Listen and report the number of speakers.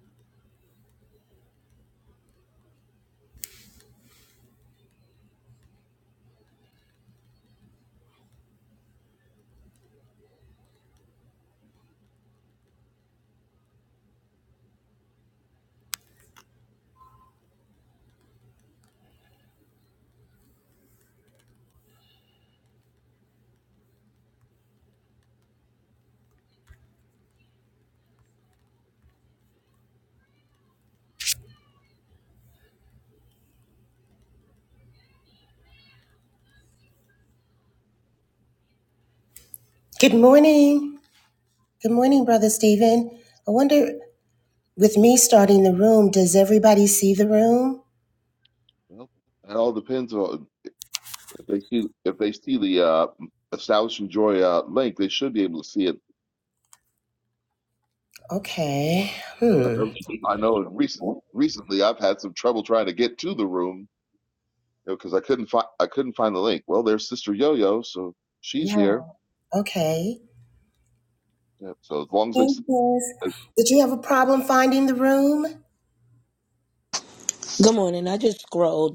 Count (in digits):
3